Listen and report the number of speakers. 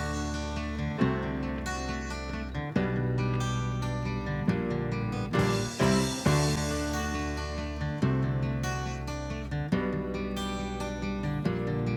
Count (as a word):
zero